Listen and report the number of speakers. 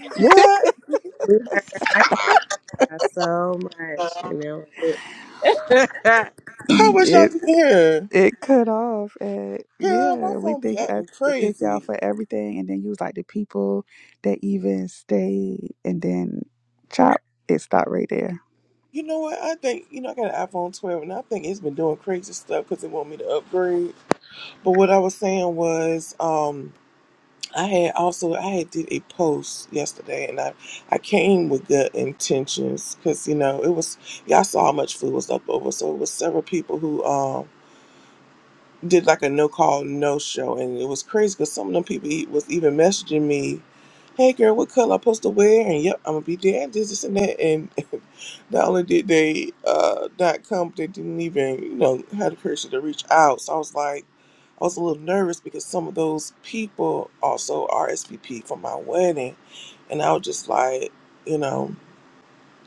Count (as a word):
three